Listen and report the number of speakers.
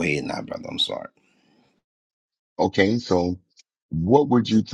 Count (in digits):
2